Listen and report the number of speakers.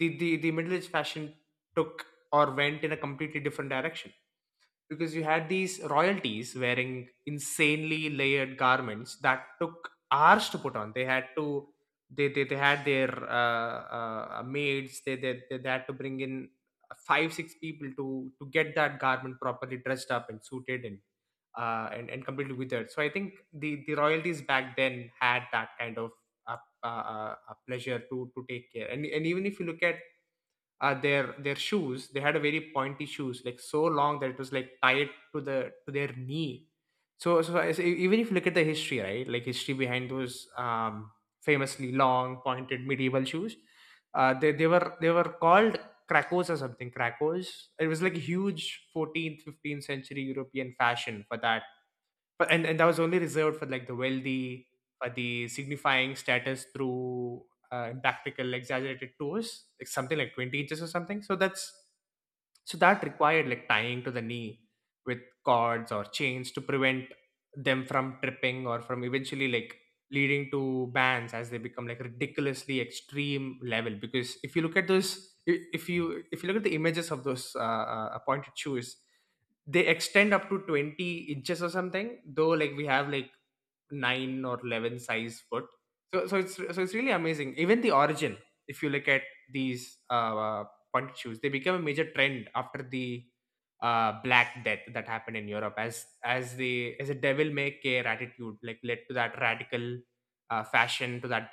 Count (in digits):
1